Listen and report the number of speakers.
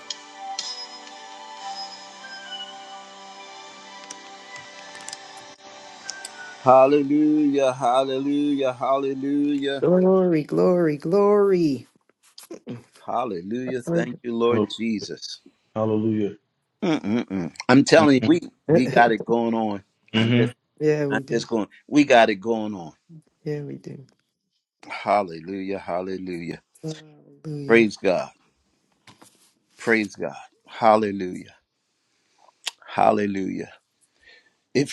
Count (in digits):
3